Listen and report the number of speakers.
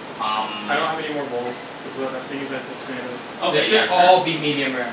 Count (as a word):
three